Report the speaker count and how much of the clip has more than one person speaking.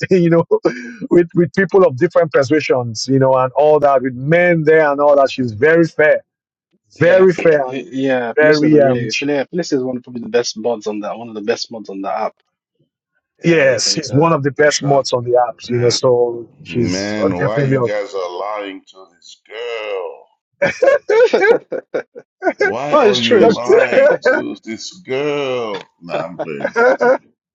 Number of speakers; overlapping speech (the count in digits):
3, about 20%